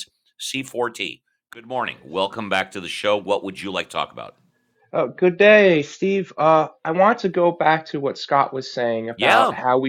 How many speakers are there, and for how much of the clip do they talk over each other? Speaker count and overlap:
2, about 4%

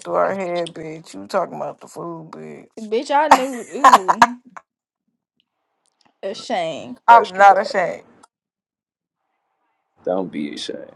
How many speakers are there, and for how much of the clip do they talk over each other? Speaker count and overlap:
3, about 7%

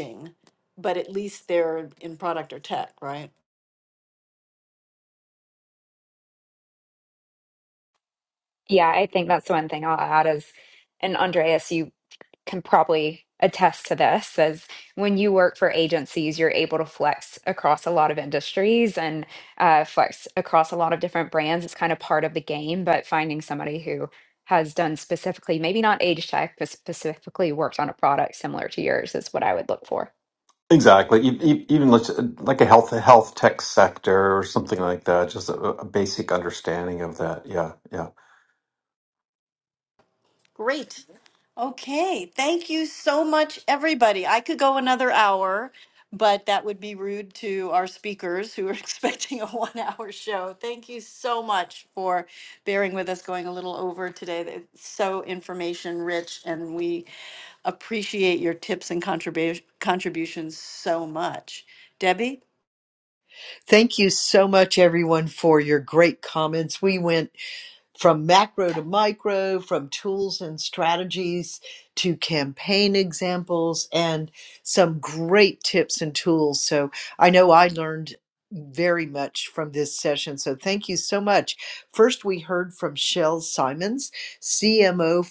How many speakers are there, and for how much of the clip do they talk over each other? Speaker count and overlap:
4, no overlap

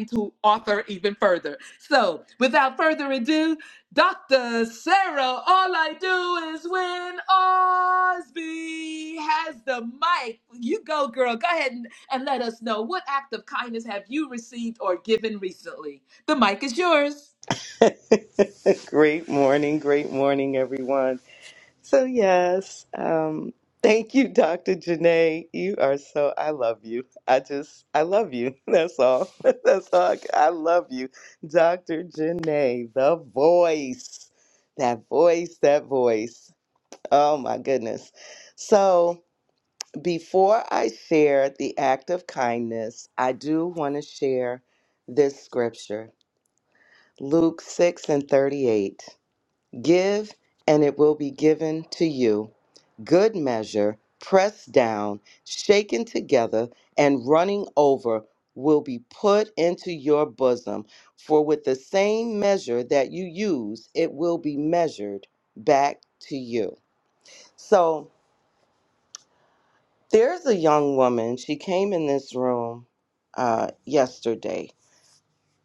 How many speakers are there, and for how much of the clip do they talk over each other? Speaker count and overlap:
2, no overlap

